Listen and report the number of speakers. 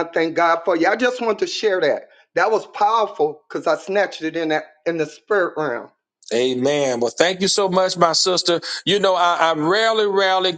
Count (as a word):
two